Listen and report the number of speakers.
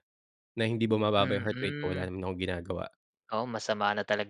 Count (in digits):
2